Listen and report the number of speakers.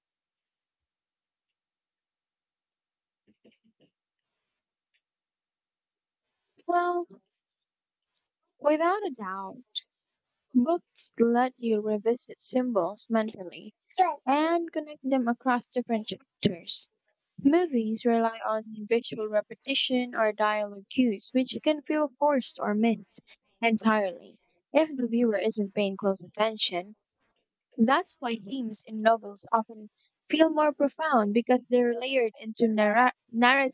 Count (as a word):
one